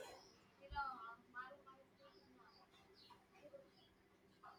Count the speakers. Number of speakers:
0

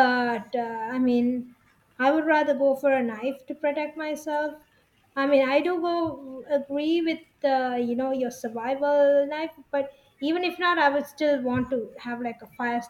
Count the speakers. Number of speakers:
1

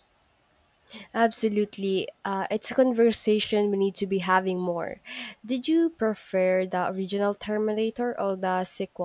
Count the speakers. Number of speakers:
1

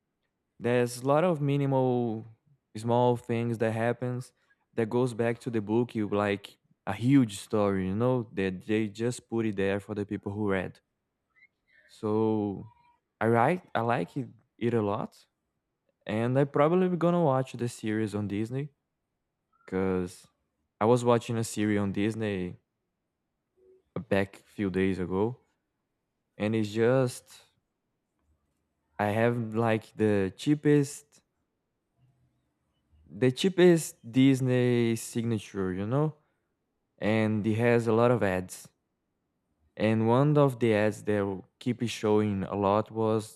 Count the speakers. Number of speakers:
1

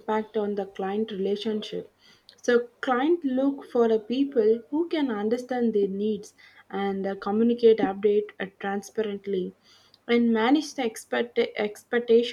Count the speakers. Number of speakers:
1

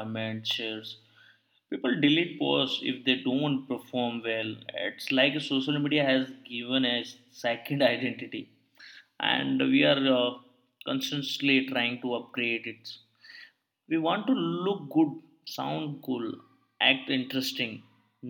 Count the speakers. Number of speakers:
1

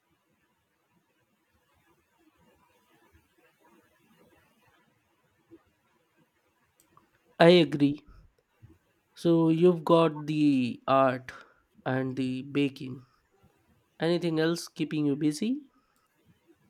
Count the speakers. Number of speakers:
1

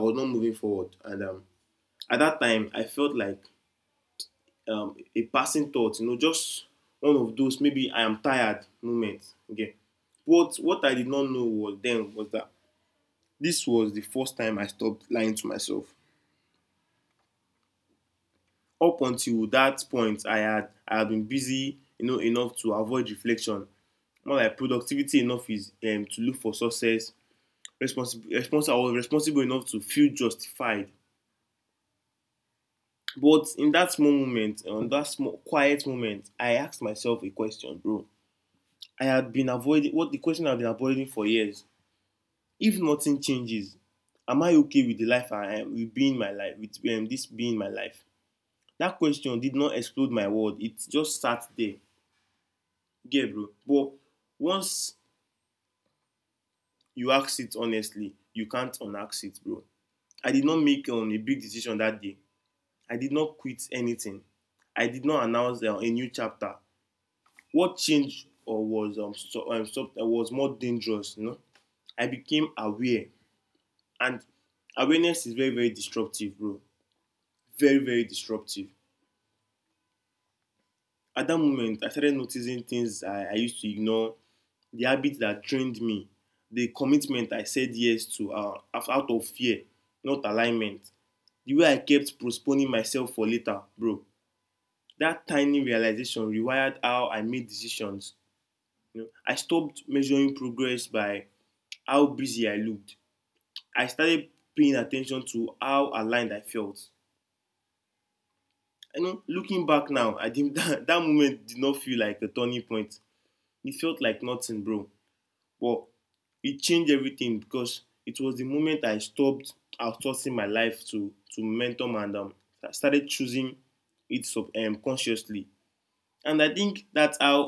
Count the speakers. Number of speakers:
1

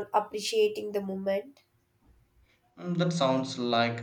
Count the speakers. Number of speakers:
2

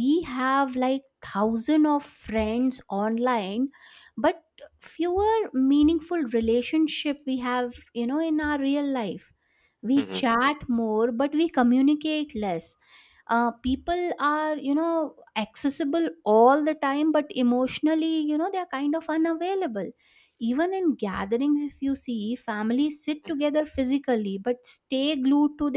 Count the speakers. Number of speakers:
1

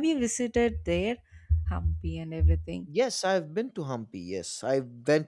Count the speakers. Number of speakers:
2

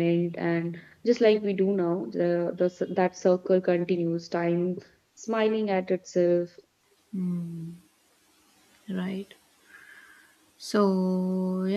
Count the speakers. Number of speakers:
2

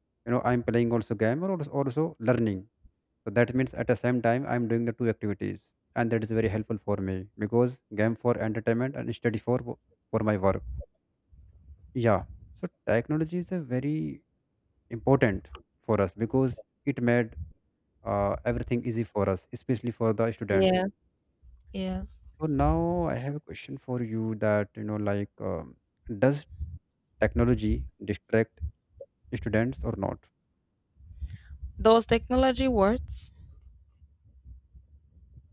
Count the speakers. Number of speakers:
2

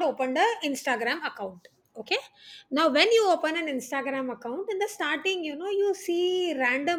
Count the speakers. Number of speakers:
1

